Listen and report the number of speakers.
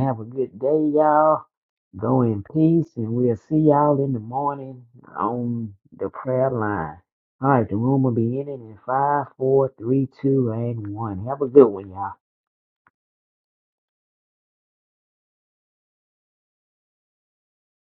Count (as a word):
one